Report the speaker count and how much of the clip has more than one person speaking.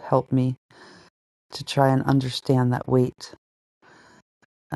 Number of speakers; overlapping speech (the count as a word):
one, no overlap